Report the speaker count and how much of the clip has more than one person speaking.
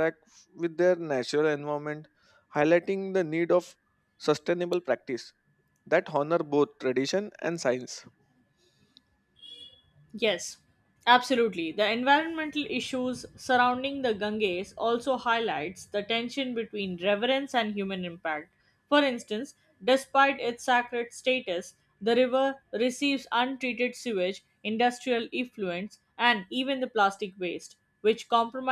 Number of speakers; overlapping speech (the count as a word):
two, no overlap